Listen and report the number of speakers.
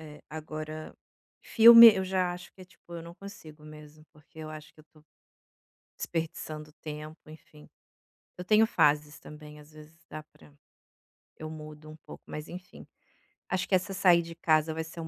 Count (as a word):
one